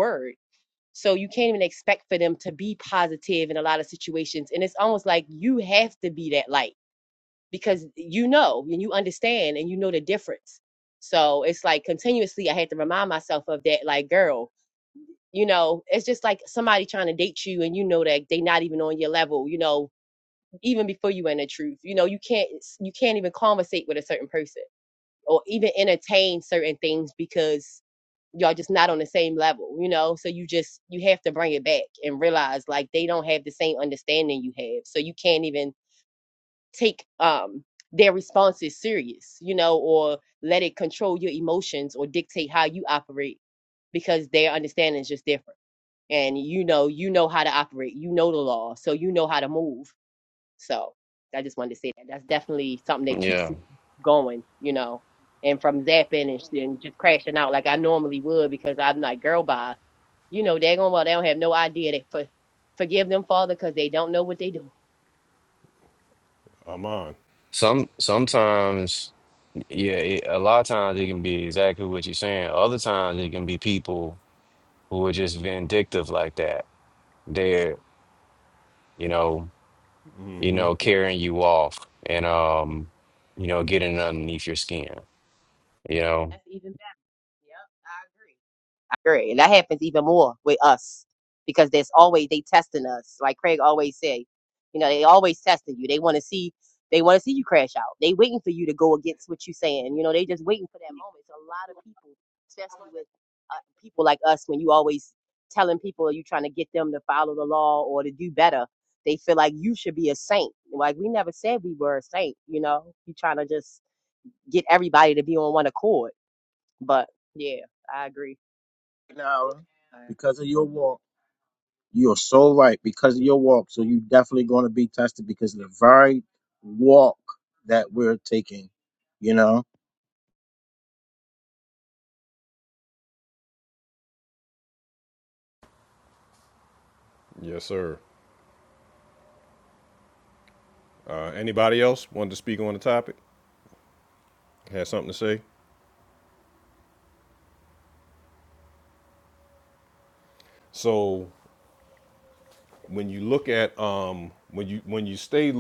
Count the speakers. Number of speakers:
four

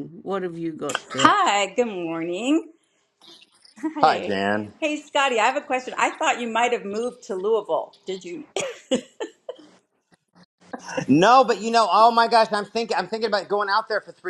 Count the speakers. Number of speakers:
three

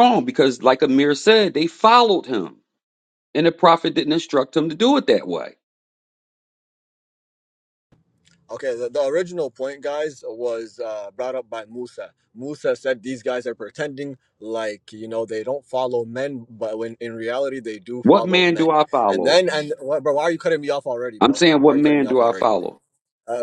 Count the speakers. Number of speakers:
two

